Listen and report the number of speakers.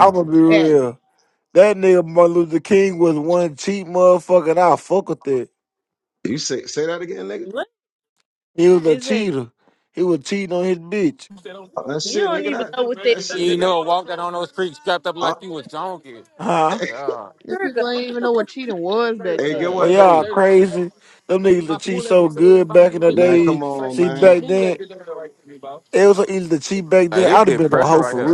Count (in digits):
5